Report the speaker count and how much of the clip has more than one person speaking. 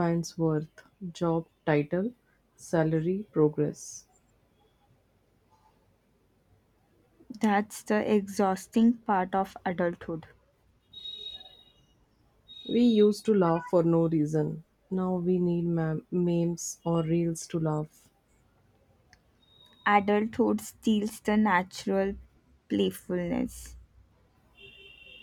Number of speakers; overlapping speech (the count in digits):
2, no overlap